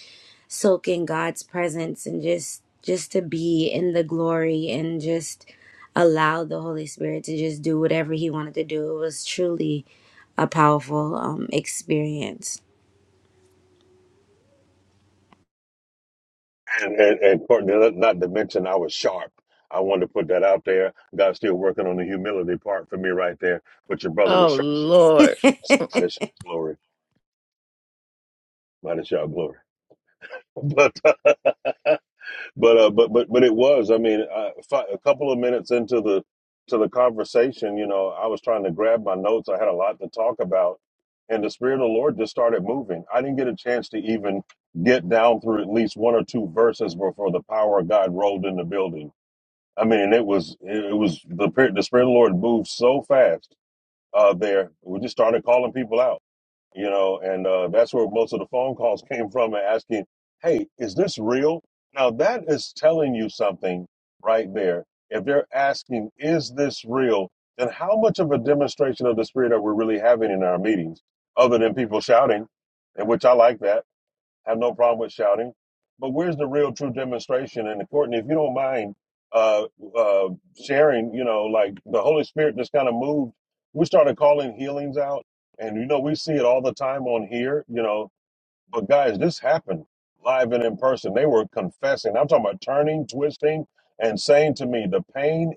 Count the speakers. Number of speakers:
three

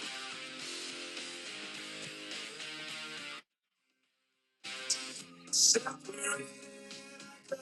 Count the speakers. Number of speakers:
zero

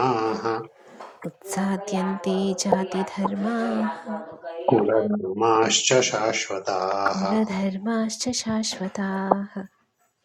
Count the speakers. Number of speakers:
two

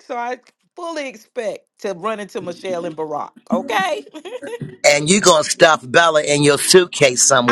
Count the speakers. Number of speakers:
two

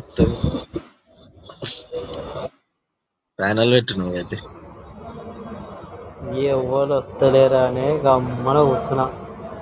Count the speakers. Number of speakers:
two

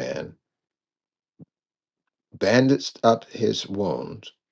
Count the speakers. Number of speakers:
one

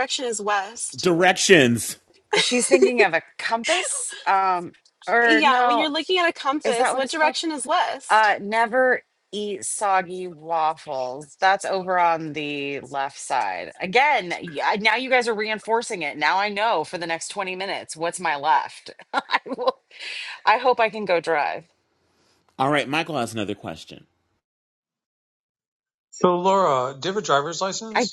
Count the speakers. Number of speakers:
four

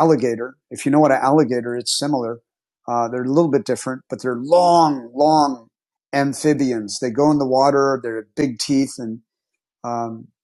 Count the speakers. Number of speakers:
one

